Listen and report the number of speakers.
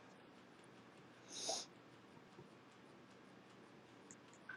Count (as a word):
zero